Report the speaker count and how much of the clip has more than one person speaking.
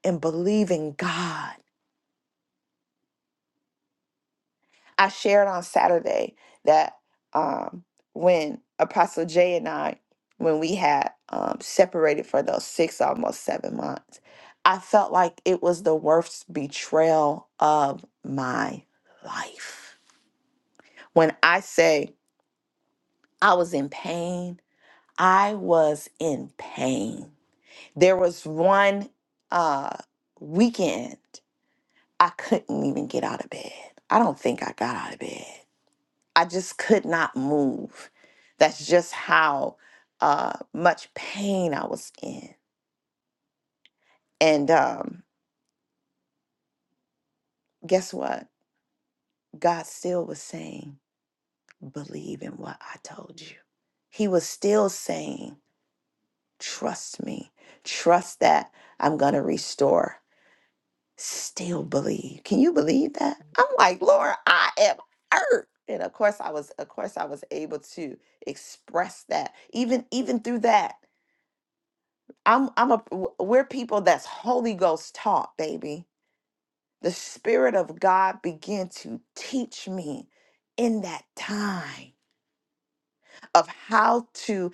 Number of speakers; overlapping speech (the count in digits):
1, no overlap